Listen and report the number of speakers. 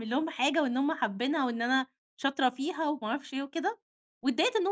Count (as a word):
one